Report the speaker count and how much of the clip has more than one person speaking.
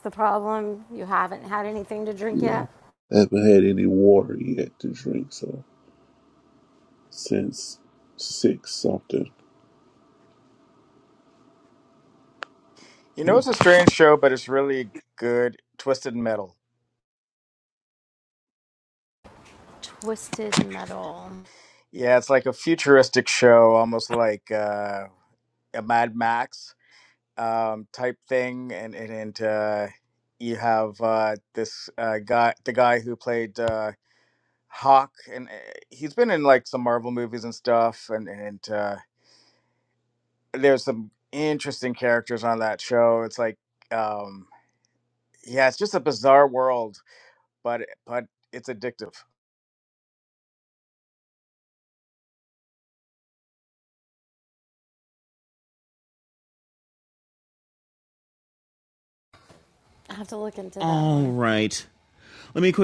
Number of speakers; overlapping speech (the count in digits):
4, about 2%